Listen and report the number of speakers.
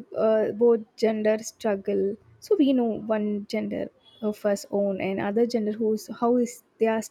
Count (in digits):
1